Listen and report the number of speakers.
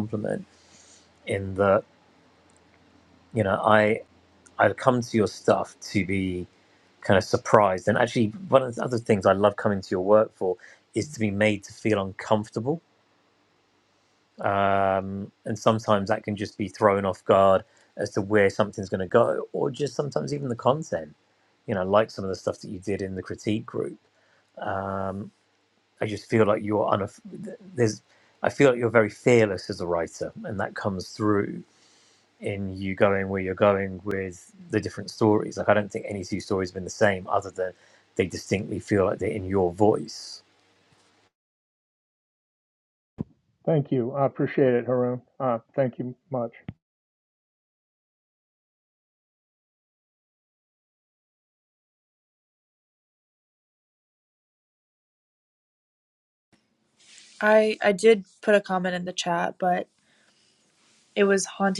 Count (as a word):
three